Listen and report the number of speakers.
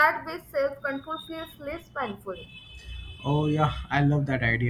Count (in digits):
2